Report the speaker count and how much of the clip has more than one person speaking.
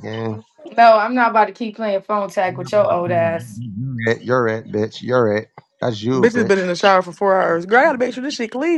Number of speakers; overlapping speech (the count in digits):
3, about 10%